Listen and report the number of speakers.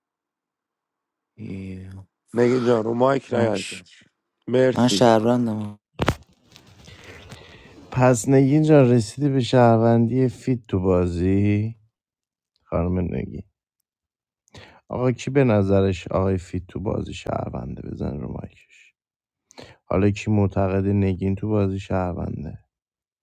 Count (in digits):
3